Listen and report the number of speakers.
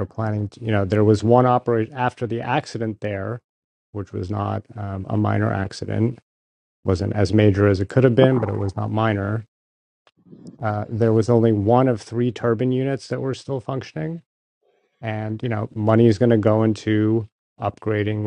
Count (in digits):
1